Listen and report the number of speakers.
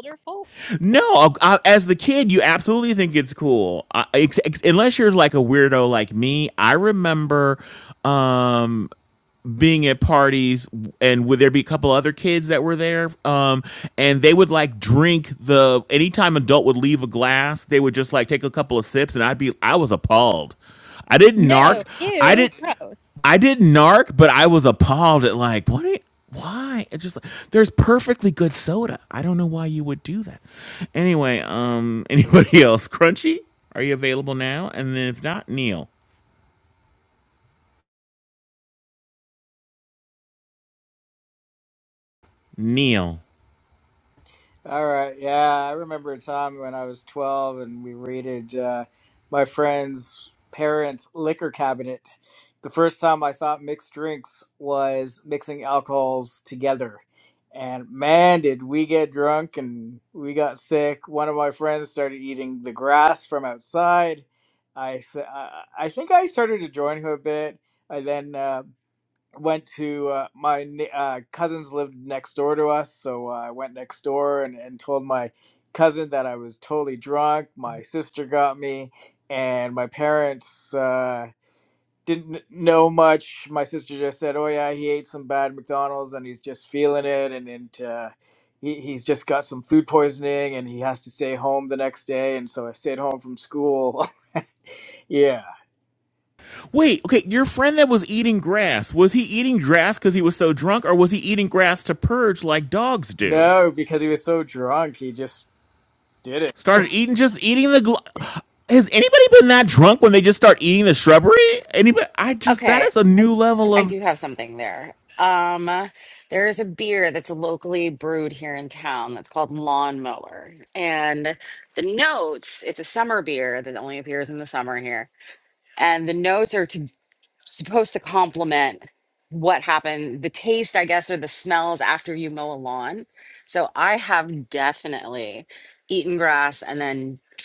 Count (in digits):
4